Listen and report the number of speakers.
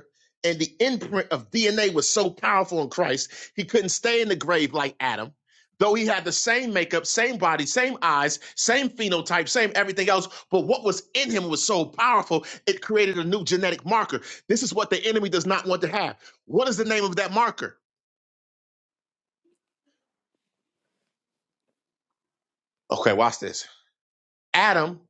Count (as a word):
one